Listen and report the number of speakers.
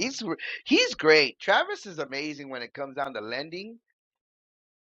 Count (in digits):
1